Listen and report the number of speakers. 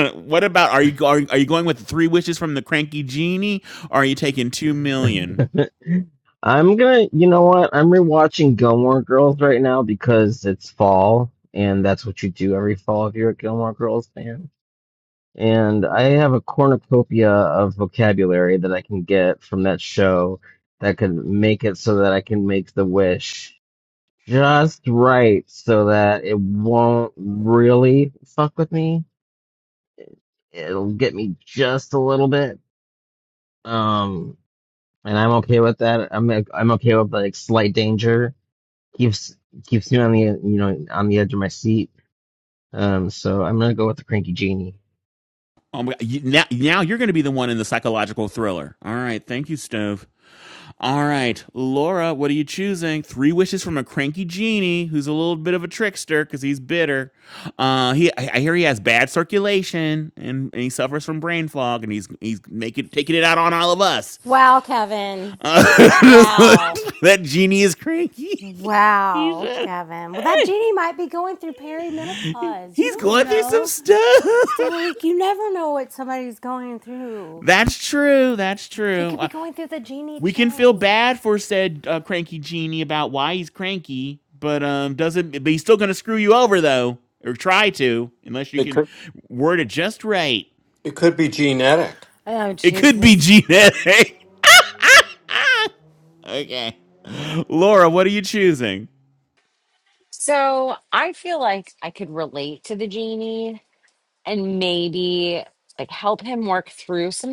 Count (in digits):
5